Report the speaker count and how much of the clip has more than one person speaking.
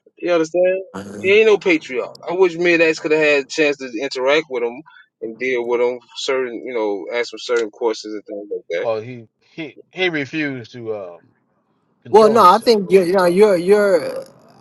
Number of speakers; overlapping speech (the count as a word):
three, about 5%